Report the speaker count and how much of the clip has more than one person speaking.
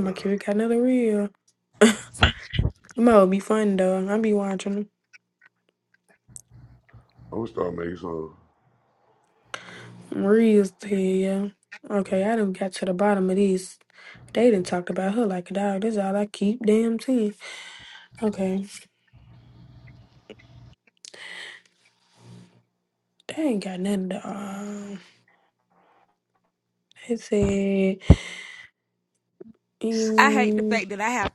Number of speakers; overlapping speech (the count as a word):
three, about 2%